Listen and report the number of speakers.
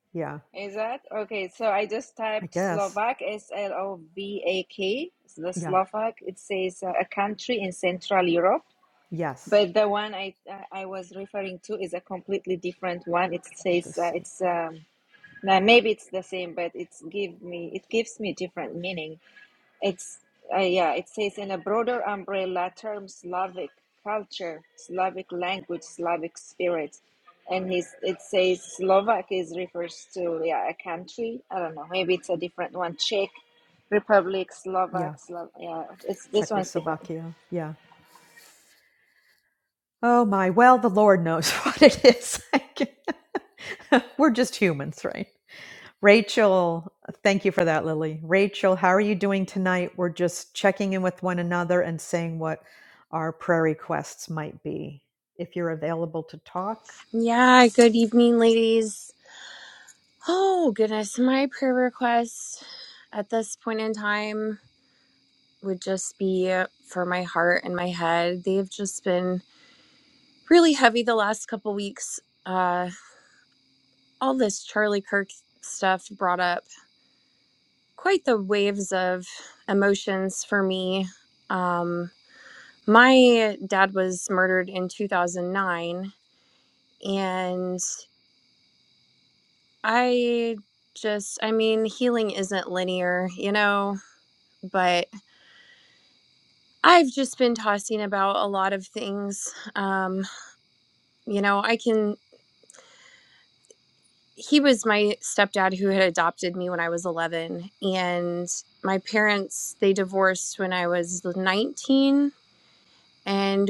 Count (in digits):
3